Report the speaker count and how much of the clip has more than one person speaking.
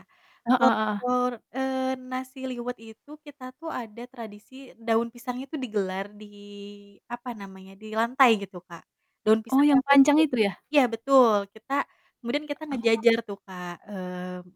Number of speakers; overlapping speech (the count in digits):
2, about 8%